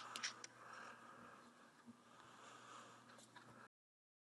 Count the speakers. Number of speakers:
zero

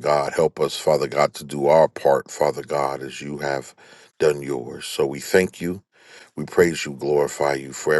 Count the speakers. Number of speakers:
one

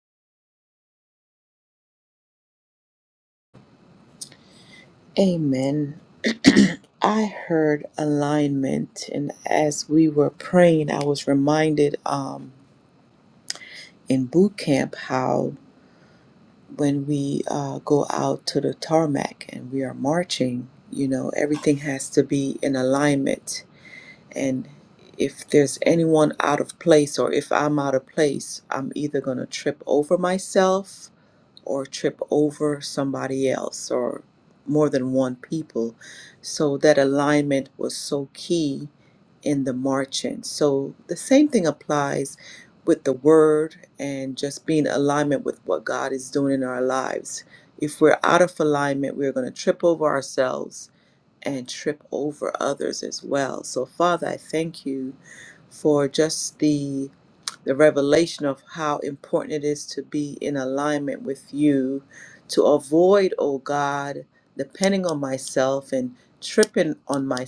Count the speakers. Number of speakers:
one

